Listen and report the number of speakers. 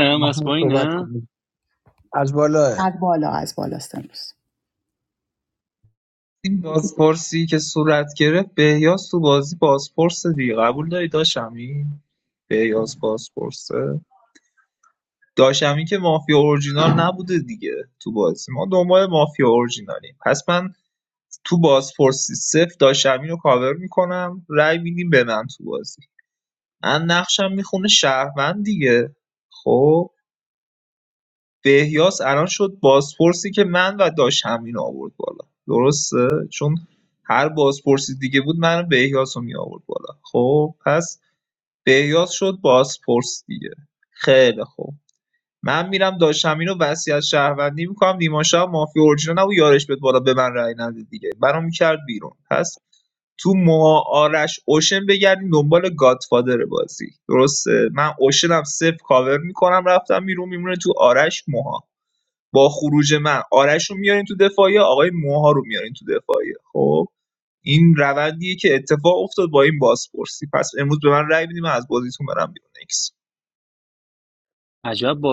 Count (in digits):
4